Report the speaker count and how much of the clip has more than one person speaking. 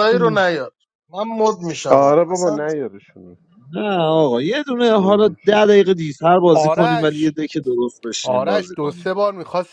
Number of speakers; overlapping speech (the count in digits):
4, about 25%